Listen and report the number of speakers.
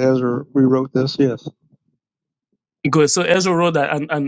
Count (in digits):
2